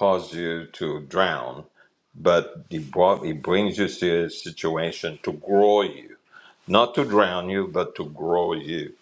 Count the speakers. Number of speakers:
1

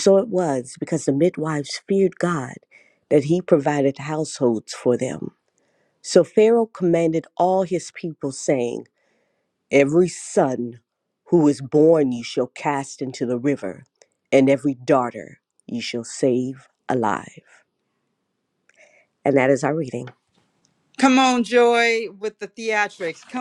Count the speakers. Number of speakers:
2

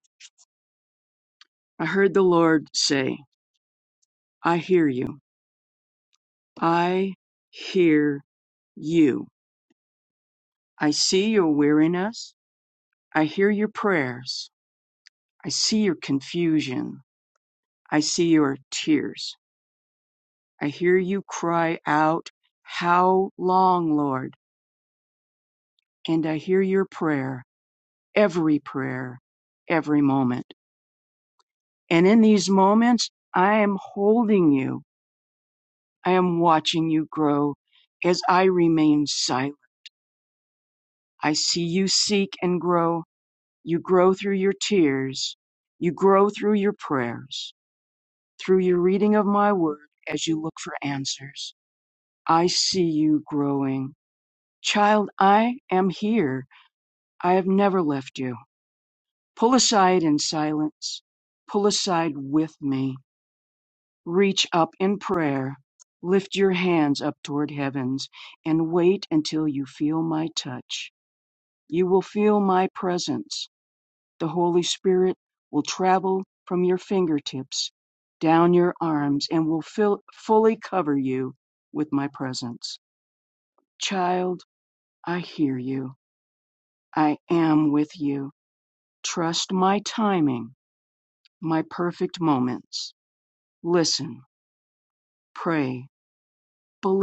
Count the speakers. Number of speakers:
1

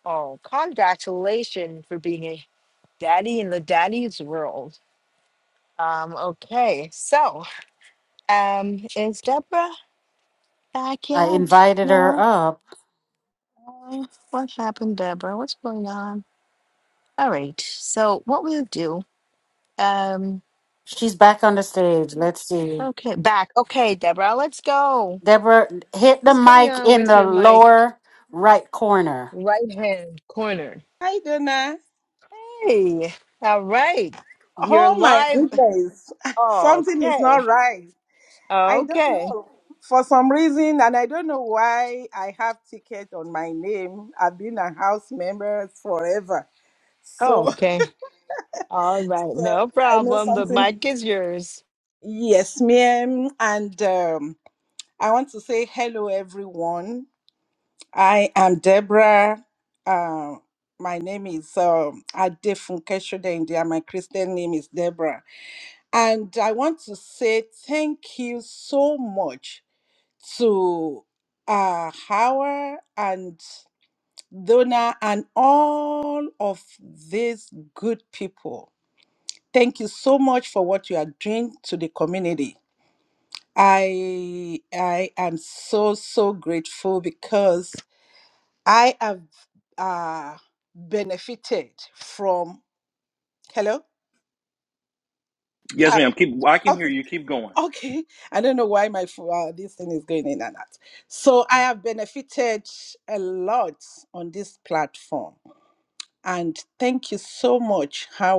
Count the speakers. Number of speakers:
4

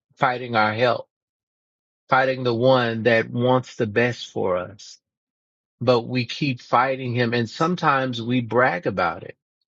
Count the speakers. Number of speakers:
1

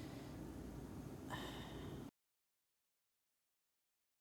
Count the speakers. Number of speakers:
0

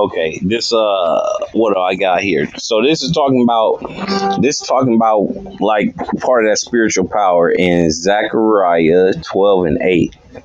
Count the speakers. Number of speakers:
1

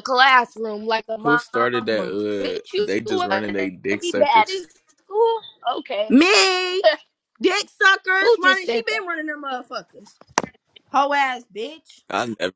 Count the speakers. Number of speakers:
3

